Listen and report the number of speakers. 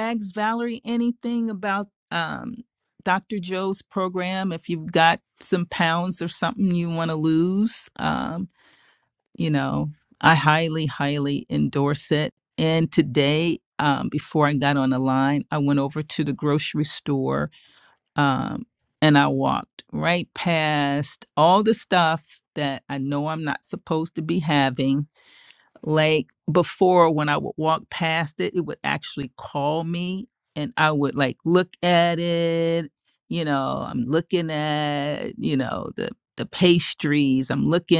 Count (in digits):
1